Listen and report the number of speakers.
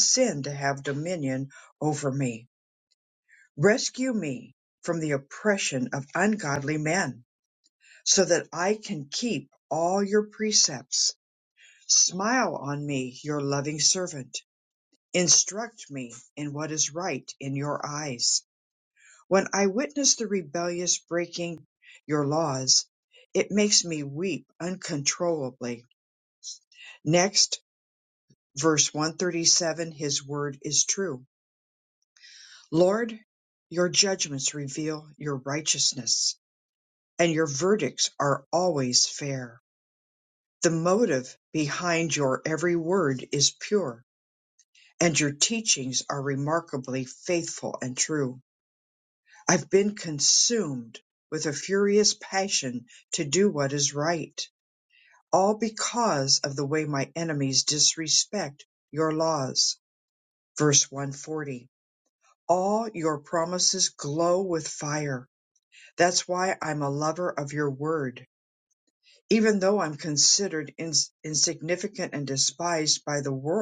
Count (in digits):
1